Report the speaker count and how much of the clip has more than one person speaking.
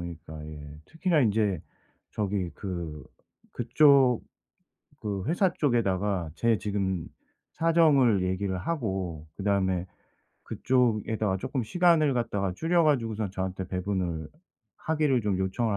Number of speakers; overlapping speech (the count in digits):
1, no overlap